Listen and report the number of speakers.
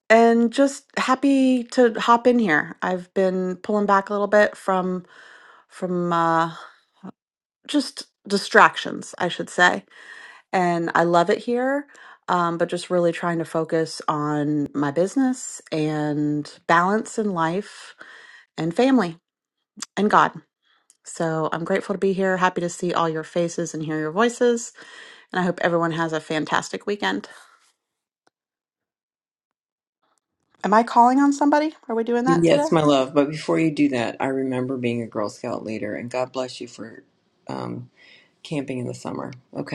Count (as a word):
two